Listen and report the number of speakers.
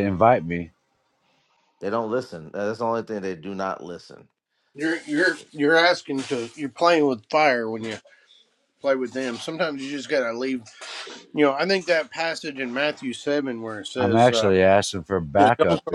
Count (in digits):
3